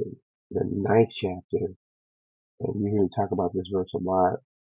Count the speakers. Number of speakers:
1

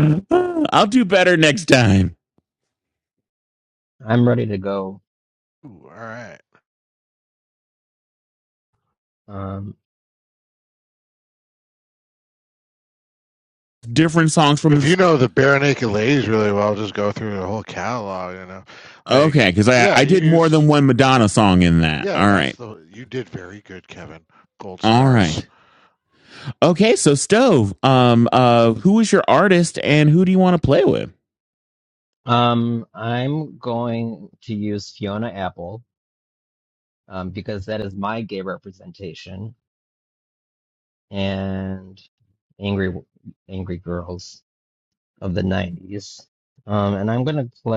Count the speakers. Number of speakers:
3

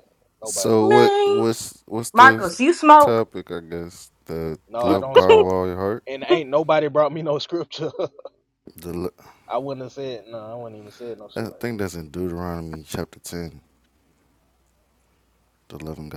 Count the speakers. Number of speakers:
3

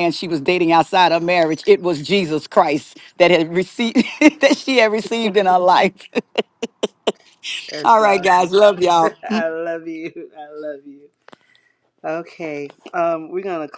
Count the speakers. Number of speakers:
2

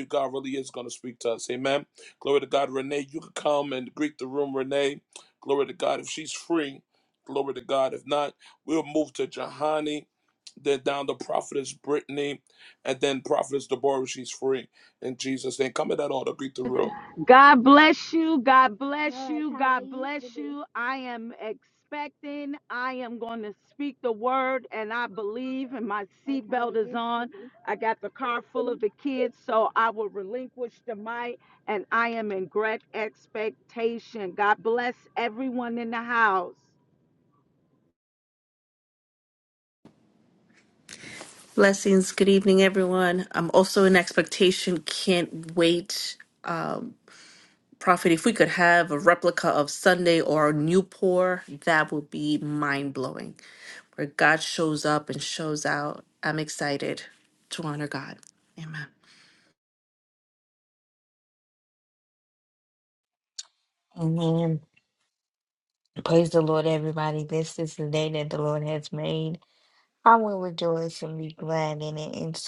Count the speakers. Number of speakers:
4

